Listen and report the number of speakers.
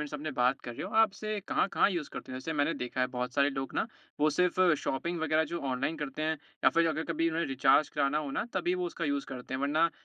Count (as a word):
one